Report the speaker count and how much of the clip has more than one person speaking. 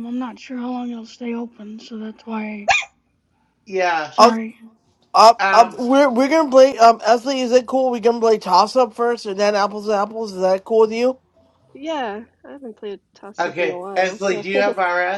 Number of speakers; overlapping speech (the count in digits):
4, about 10%